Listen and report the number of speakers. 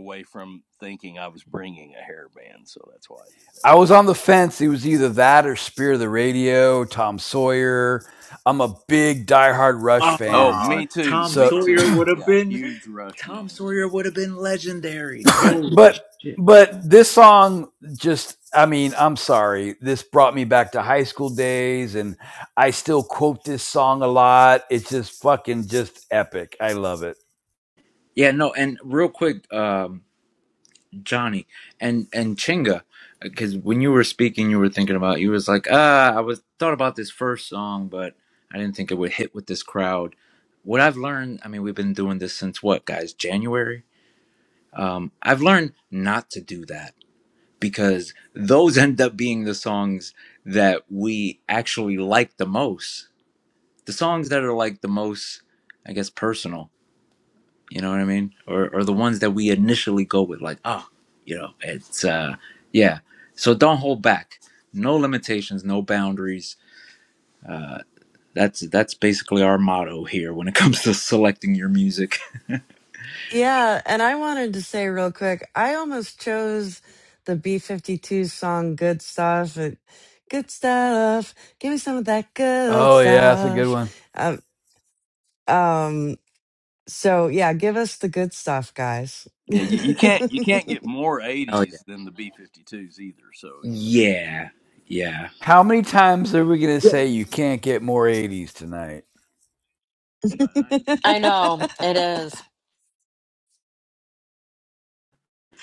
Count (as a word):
five